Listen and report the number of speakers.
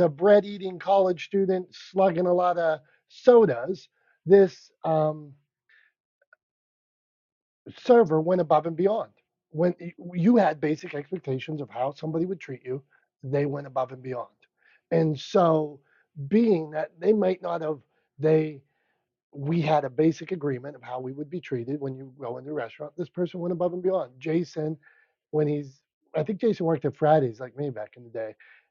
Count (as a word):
one